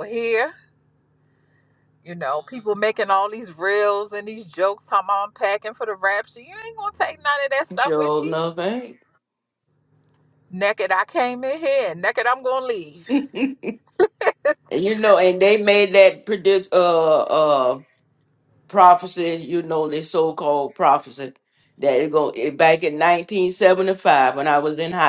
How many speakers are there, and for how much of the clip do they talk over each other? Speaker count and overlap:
2, about 3%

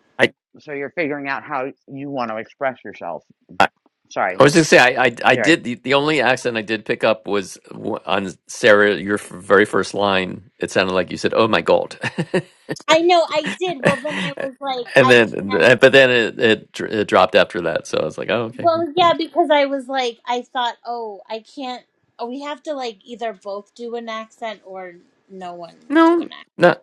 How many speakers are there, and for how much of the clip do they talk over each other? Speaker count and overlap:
3, about 5%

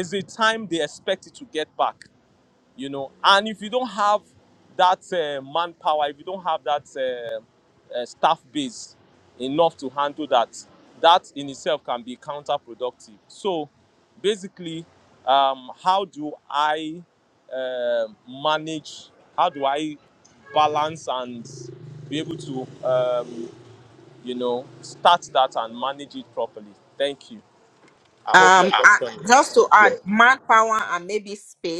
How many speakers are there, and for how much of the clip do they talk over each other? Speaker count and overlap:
2, about 4%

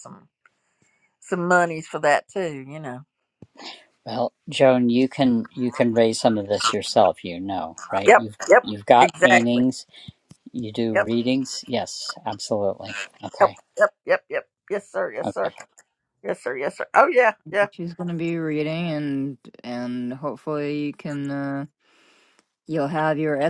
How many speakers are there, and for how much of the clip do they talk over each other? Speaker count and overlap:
3, about 8%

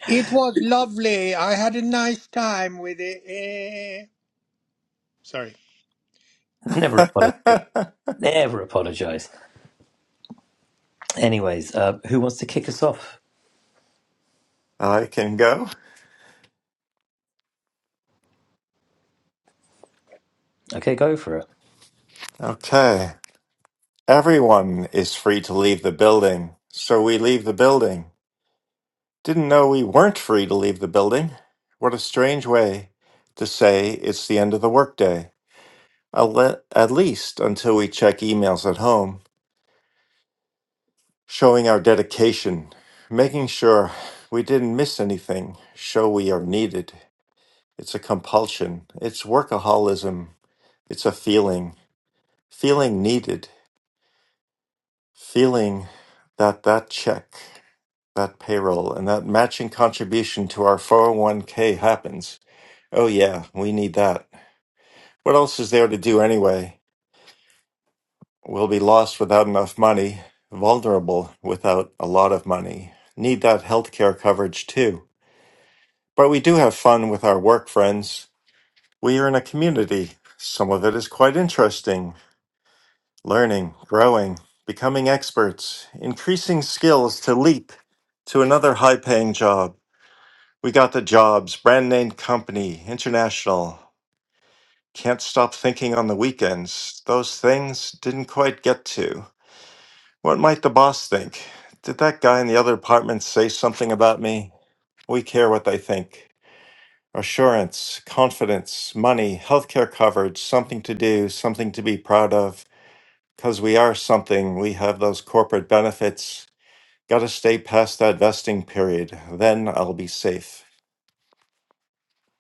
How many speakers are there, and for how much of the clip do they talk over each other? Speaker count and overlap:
3, under 1%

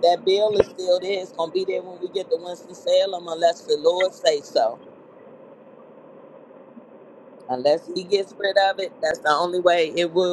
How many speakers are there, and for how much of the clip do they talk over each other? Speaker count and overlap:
1, no overlap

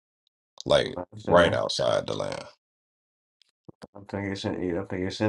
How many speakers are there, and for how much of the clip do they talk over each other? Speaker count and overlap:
2, about 8%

